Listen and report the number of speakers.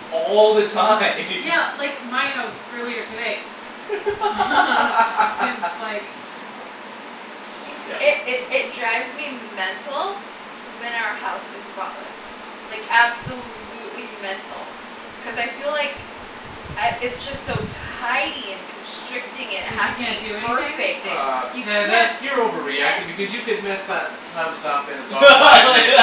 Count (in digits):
4